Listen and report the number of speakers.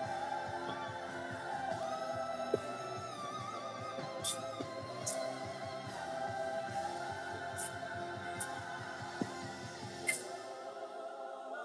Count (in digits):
0